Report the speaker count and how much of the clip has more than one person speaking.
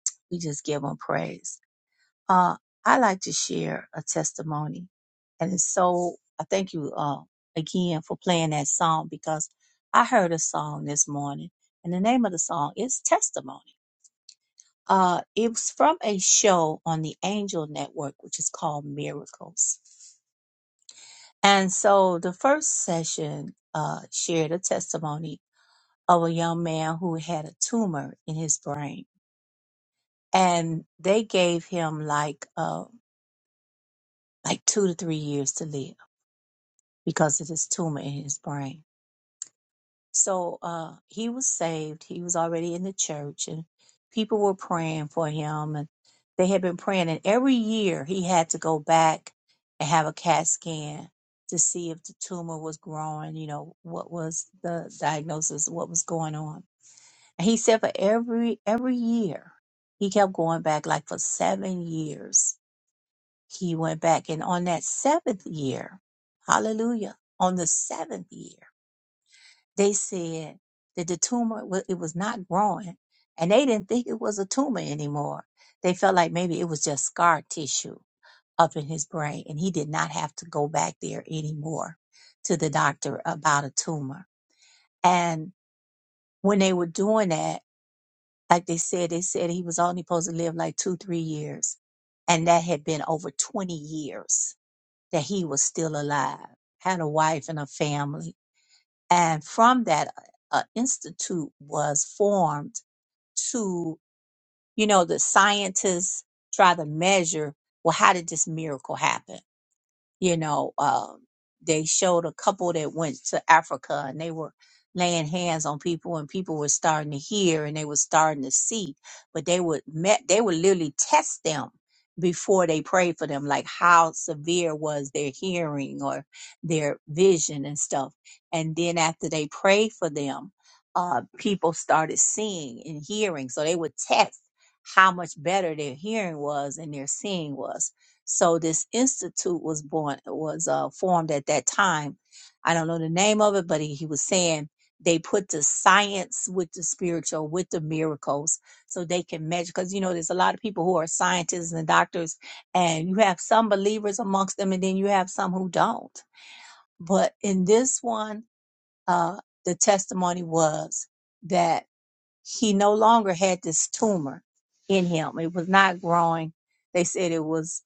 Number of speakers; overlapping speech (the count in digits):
1, no overlap